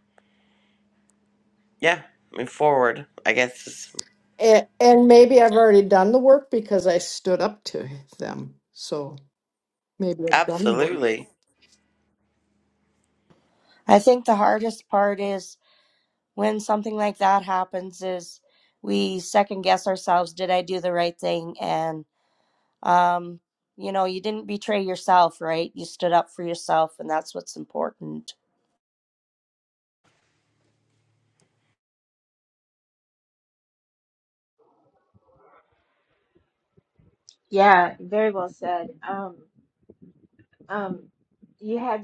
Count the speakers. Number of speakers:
four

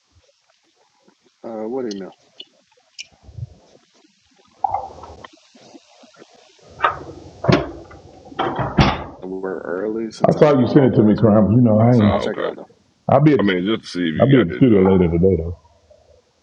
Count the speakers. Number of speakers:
three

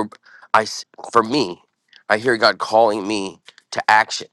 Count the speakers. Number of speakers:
one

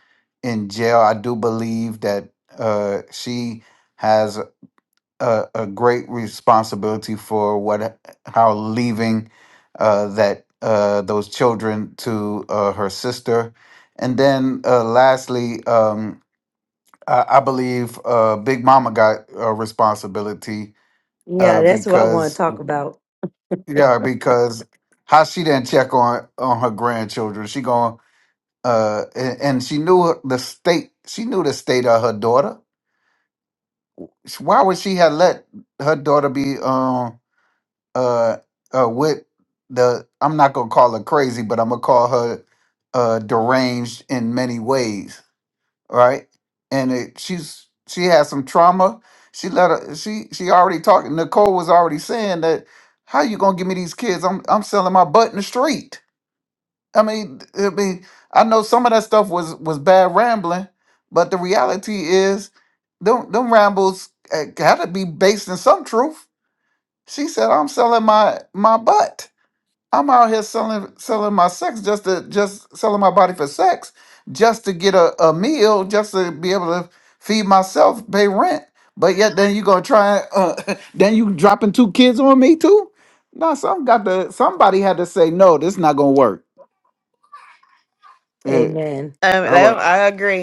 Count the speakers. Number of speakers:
three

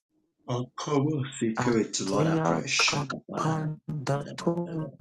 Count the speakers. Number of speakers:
two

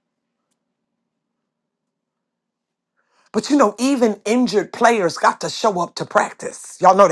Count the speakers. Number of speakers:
one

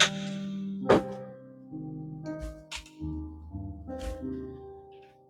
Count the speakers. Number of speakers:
zero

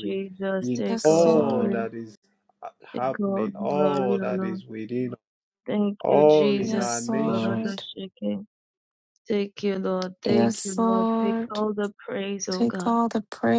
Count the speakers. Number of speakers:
three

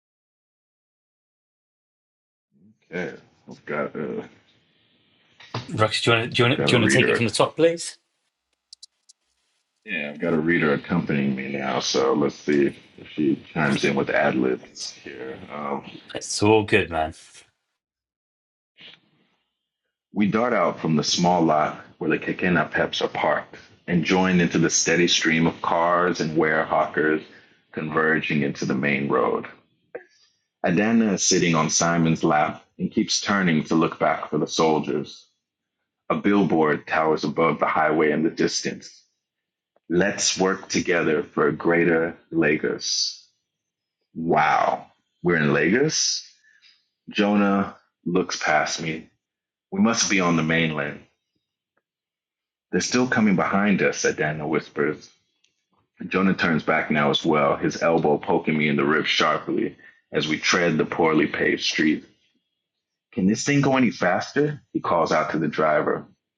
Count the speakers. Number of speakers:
two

